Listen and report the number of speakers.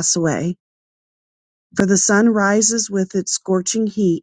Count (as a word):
one